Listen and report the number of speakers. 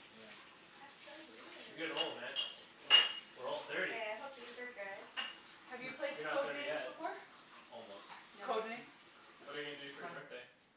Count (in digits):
4